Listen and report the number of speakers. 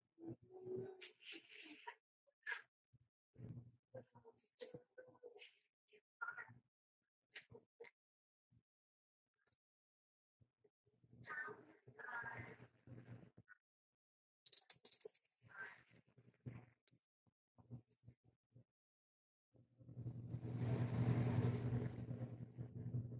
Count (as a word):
zero